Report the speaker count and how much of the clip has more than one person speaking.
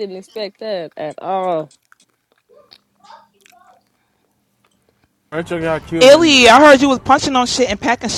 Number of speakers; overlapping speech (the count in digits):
3, about 5%